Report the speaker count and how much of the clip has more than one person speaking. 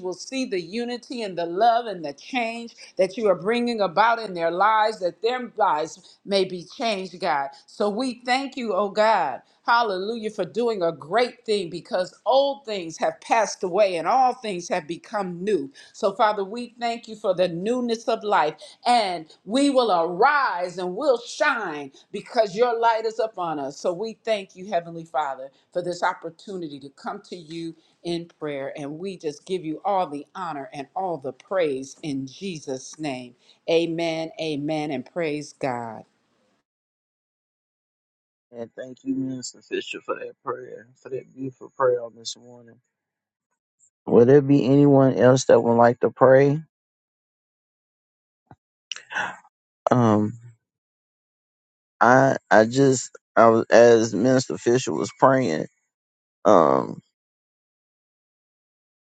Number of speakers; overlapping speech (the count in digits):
2, no overlap